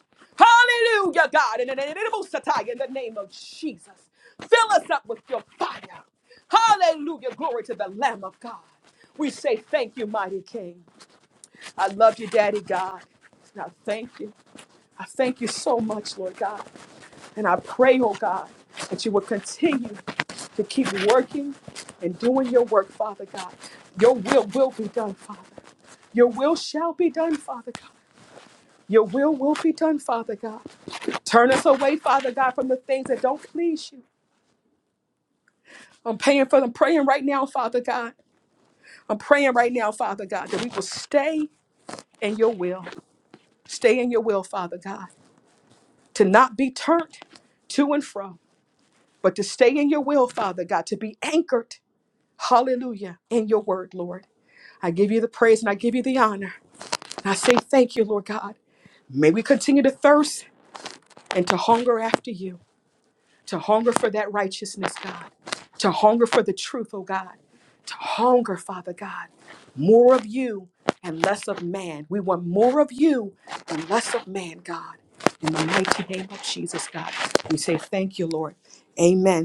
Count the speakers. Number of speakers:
1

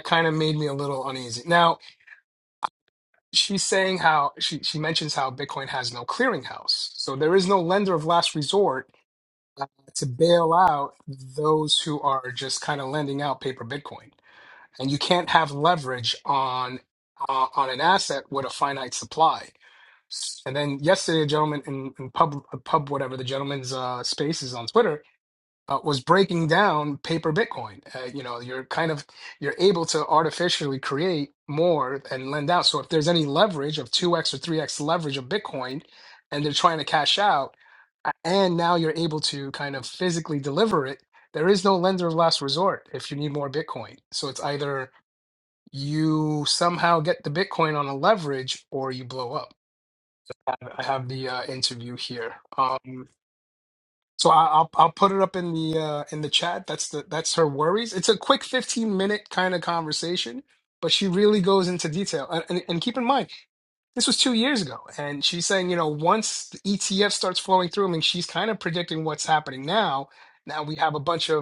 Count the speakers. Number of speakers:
1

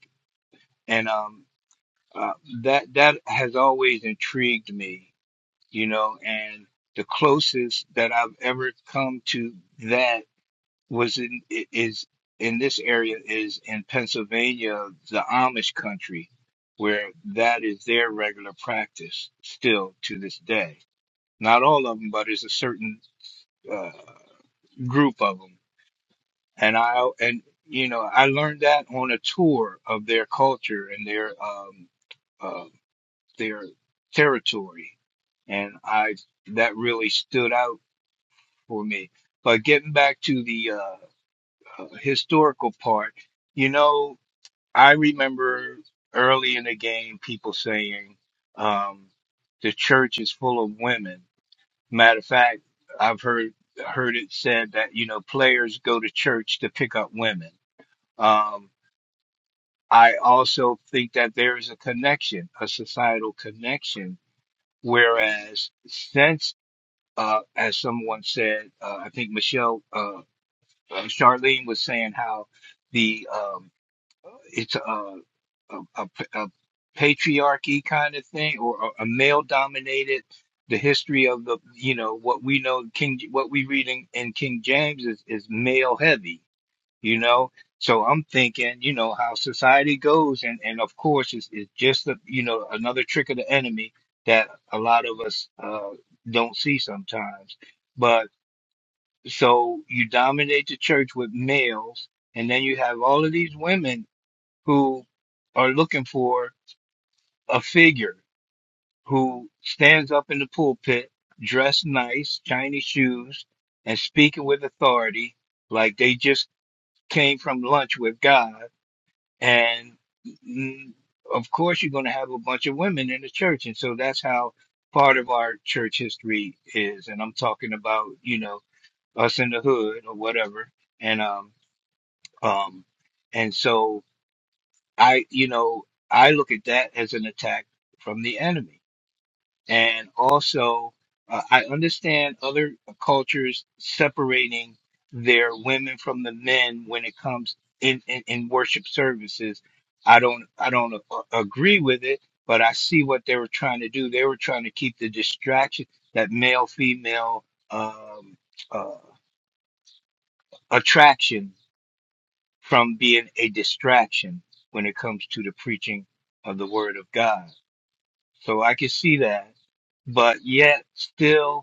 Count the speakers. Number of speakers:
1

